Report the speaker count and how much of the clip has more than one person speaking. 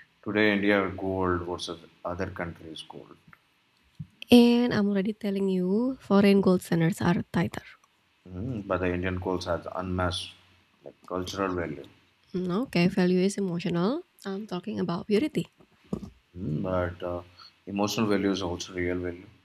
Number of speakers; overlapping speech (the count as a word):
two, no overlap